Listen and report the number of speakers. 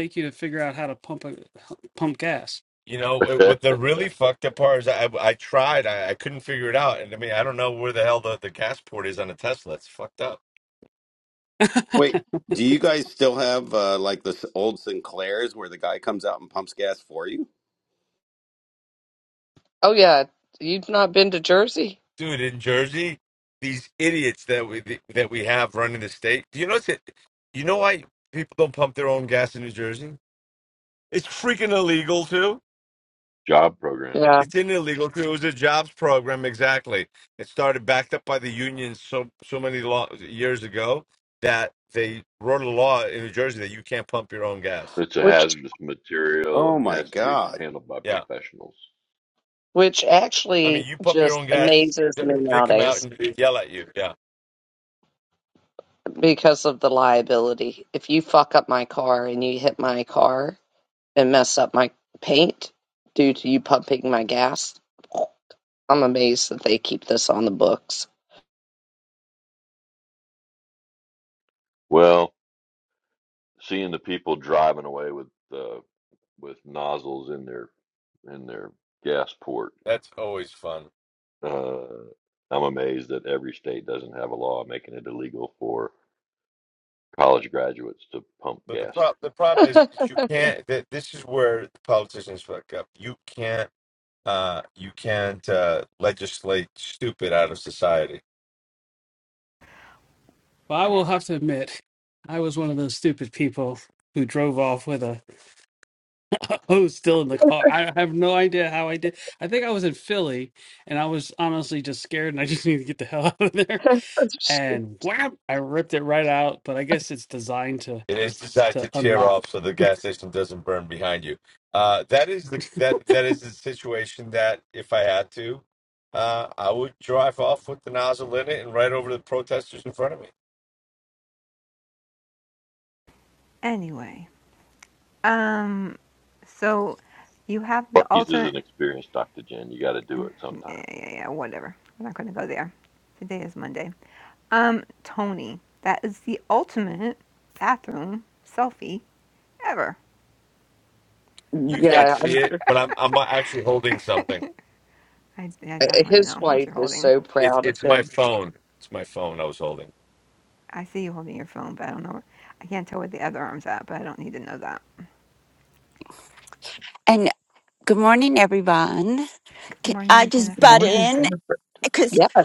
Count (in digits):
7